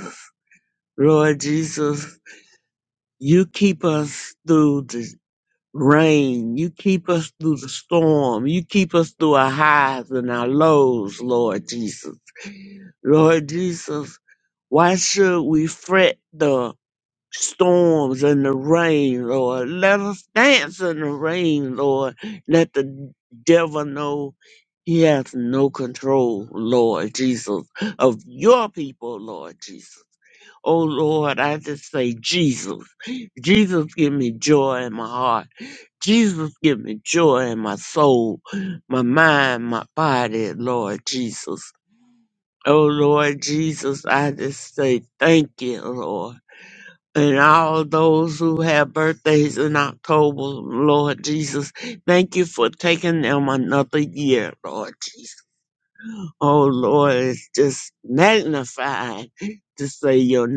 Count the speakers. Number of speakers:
one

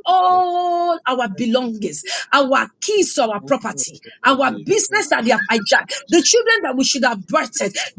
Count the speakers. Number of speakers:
one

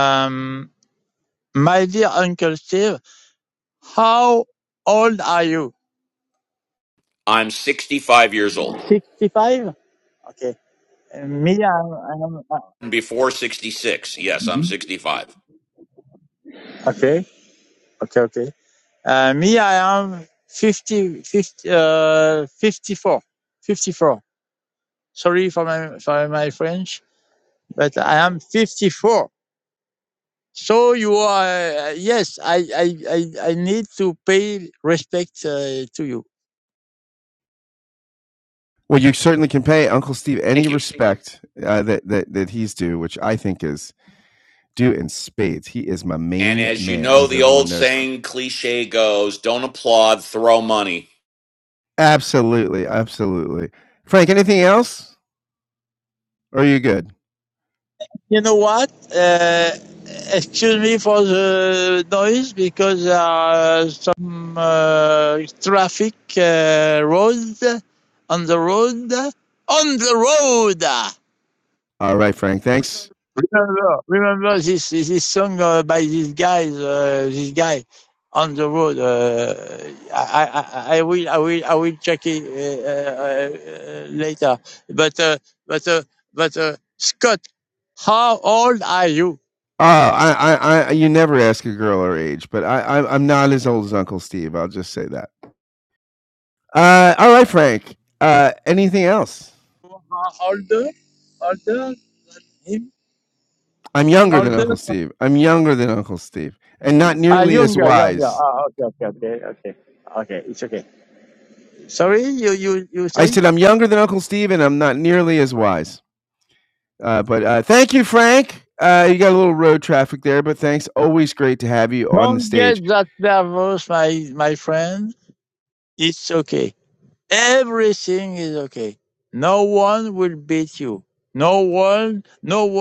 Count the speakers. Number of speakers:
three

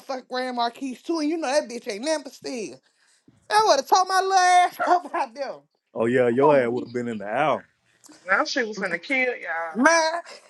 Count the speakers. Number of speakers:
three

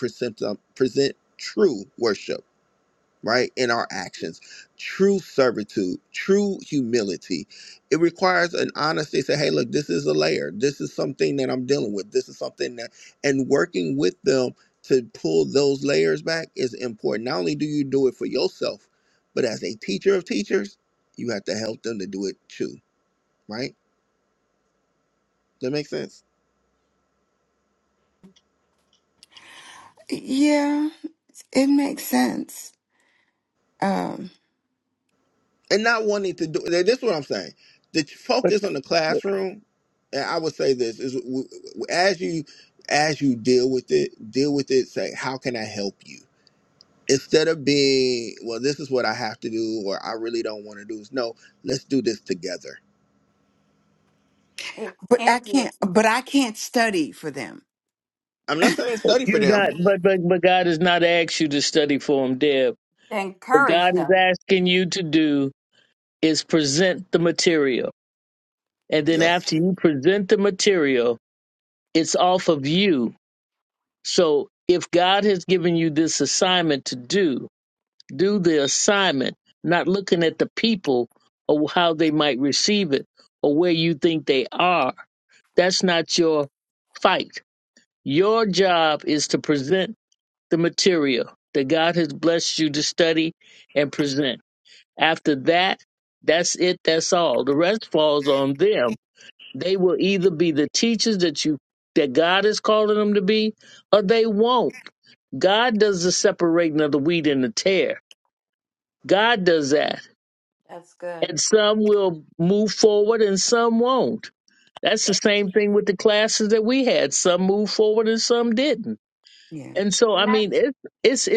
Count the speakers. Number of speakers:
four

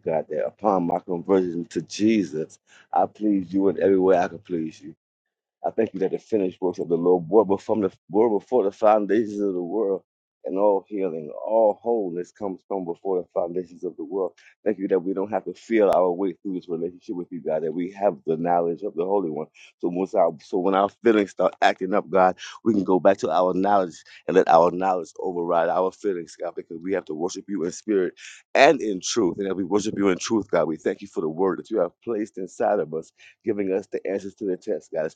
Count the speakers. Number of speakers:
one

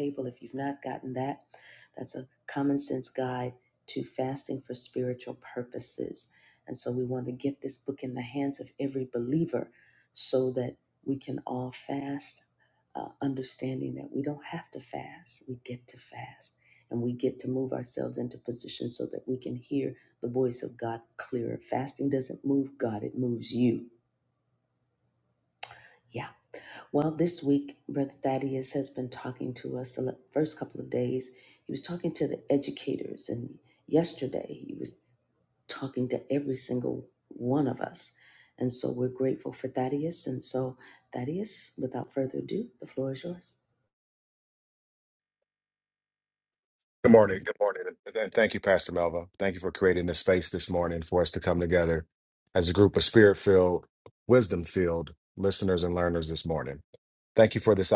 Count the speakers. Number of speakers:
two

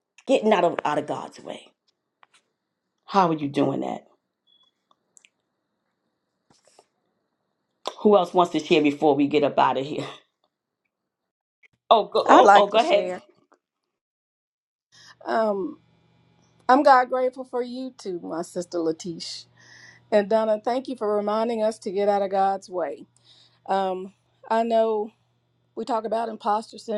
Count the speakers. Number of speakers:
two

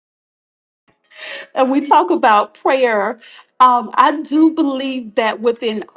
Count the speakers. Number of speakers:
one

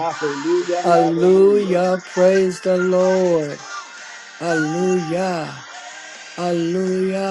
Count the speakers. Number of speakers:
two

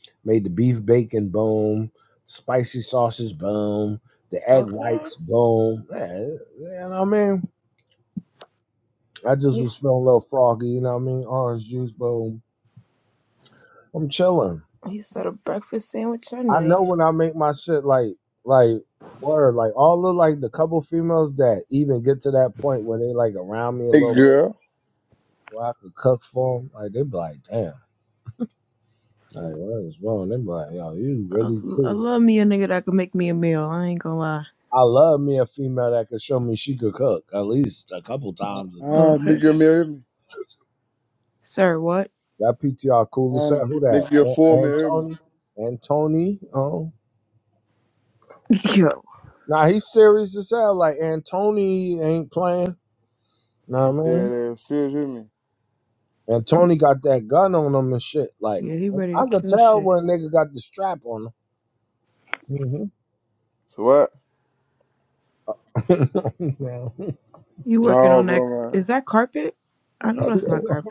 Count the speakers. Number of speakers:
three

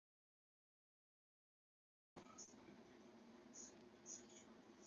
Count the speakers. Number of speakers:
zero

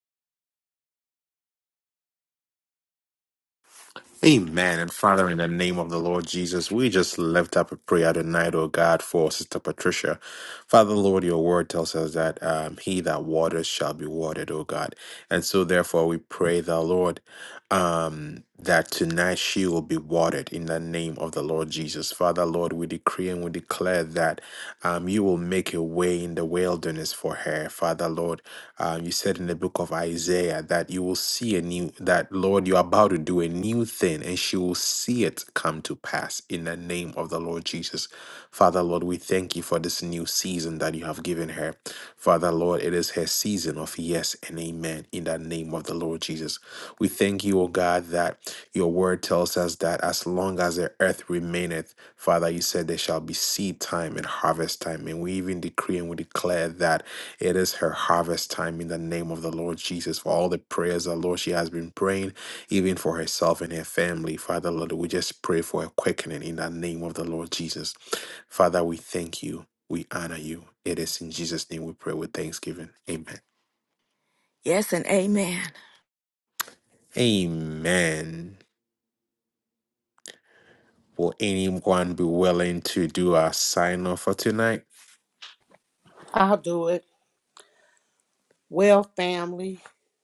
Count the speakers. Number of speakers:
three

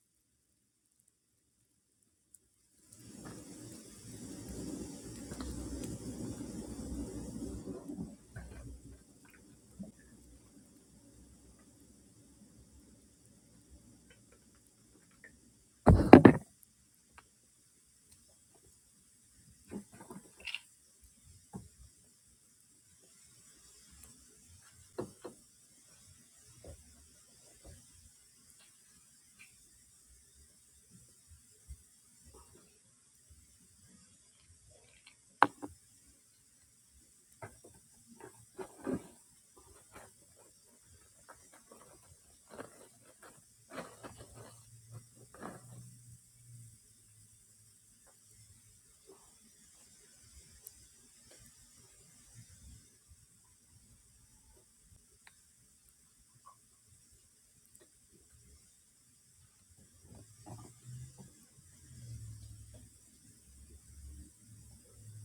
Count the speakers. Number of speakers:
zero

